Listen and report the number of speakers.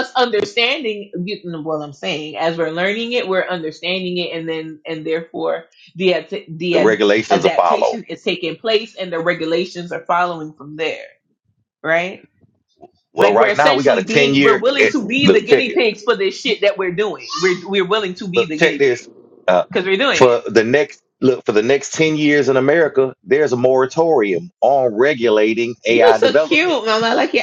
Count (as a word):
two